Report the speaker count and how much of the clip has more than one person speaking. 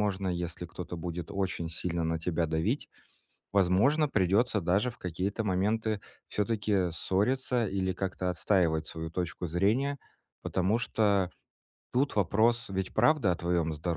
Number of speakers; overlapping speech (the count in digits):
1, no overlap